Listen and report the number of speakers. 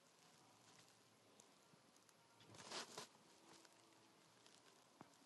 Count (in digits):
0